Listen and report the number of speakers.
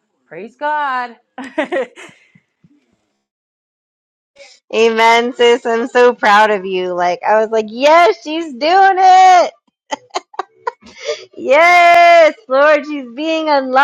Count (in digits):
2